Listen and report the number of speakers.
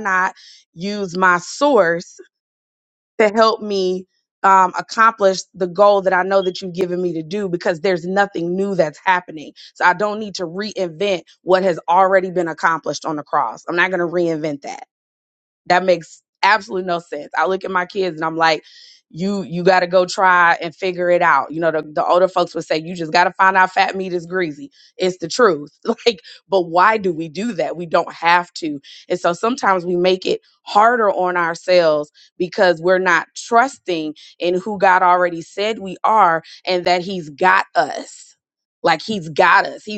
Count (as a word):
one